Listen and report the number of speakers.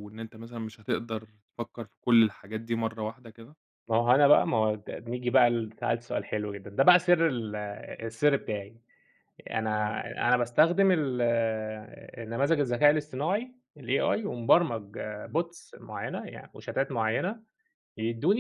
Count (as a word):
two